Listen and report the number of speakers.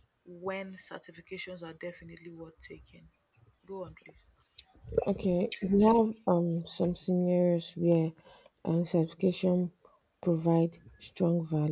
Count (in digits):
2